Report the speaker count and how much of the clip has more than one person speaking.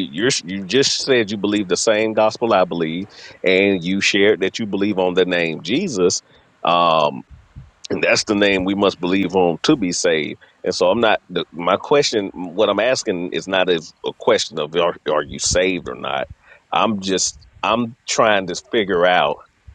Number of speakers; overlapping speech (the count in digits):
1, no overlap